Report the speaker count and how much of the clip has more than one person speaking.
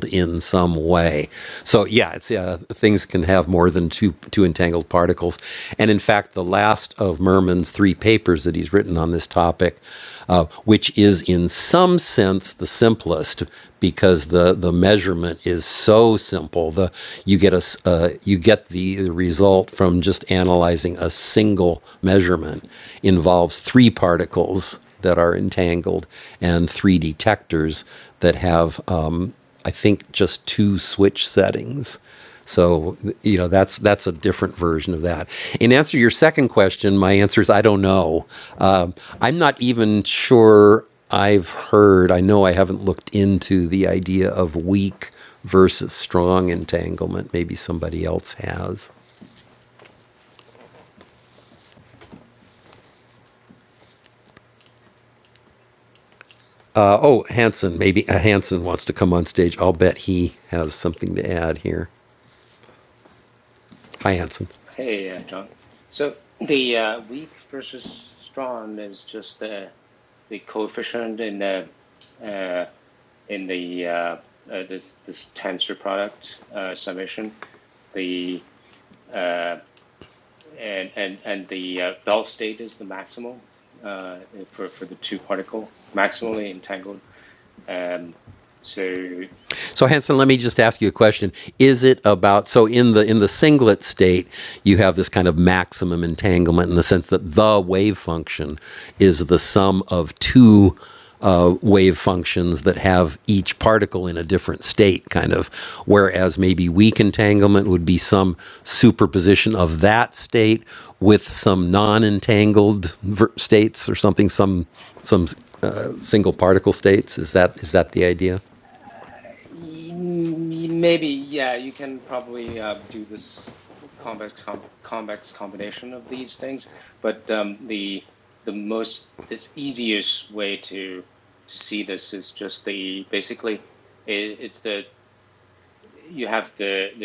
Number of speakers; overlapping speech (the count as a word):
two, no overlap